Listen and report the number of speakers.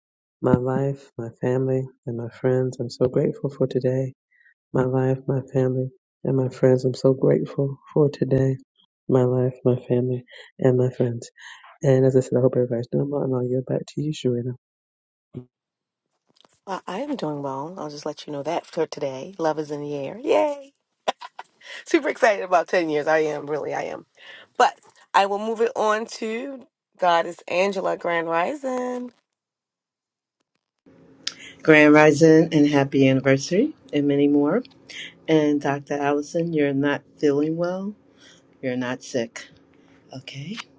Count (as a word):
three